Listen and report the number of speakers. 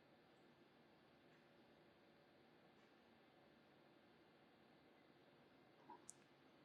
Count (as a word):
zero